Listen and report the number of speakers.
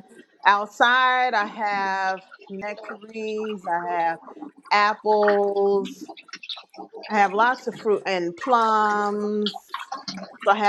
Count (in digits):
1